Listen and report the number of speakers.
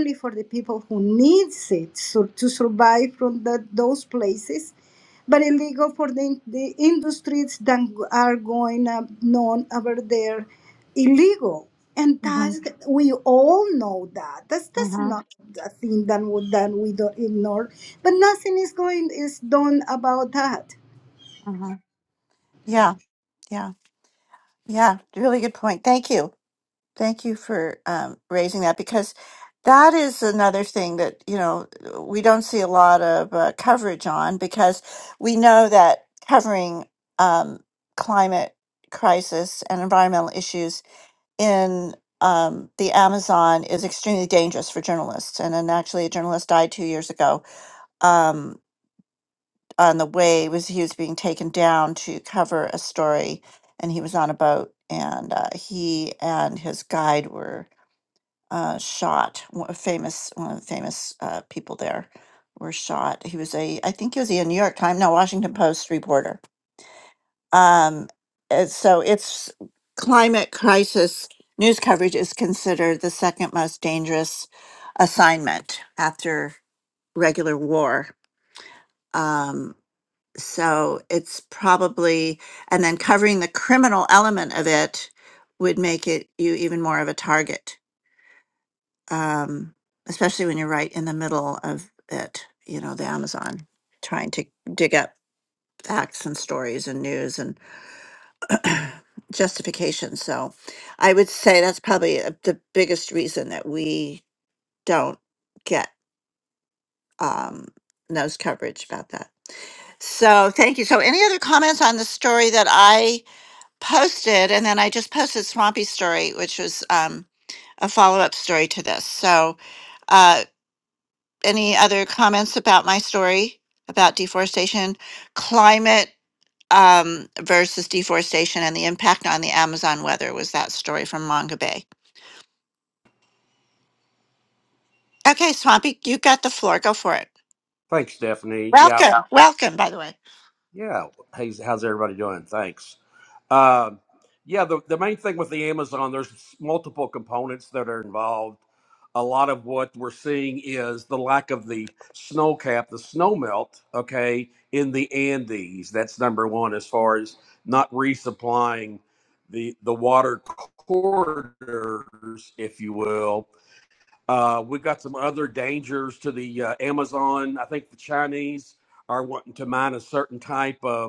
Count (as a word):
three